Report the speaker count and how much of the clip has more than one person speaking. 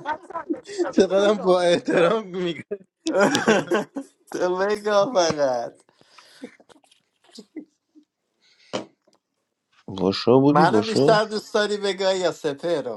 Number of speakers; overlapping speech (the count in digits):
4, about 10%